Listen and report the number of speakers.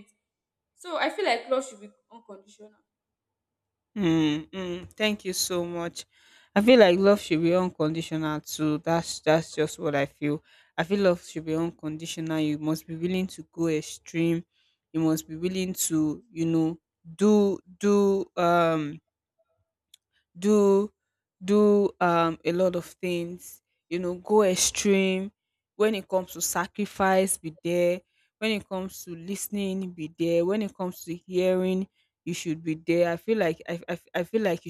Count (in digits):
2